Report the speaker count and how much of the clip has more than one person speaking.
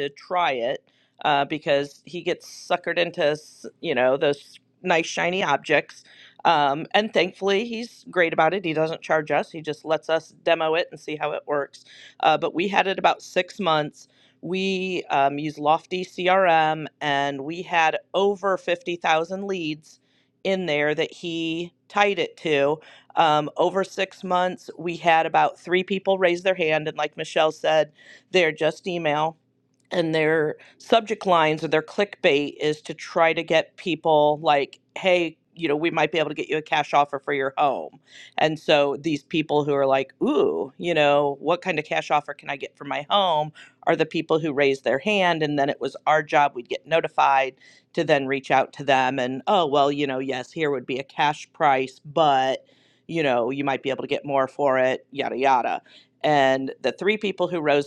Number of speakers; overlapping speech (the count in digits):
1, no overlap